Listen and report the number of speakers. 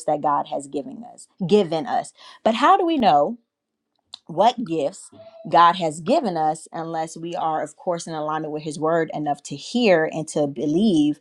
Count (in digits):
1